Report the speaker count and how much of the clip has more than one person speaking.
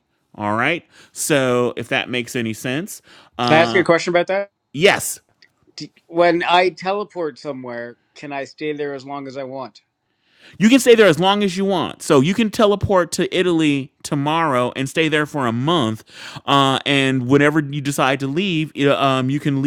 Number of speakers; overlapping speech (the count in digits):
2, about 2%